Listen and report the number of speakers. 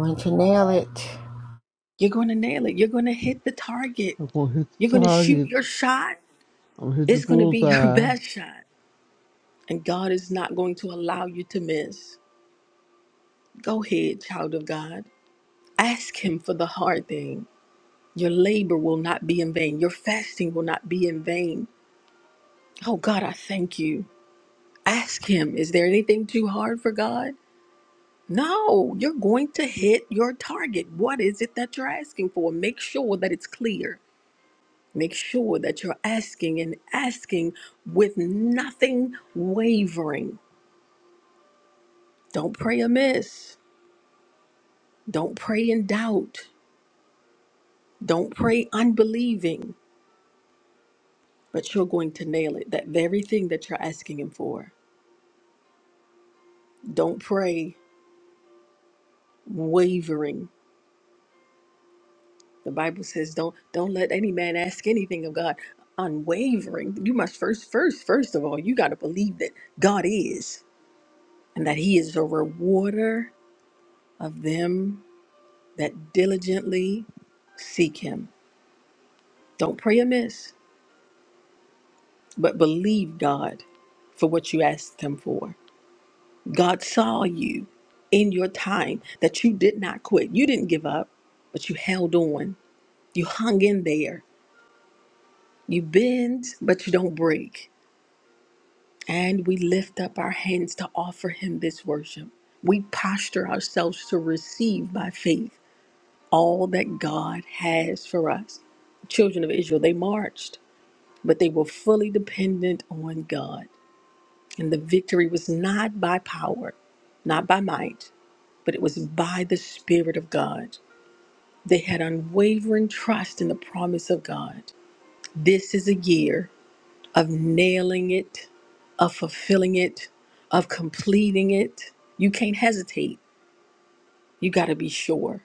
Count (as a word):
three